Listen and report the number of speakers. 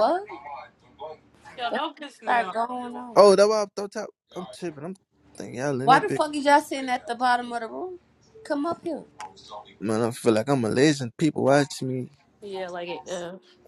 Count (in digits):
3